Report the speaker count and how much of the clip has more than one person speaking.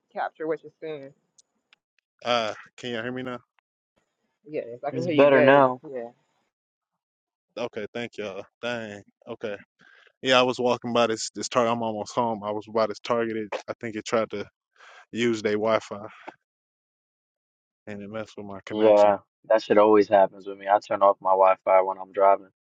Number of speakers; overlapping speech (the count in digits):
3, about 6%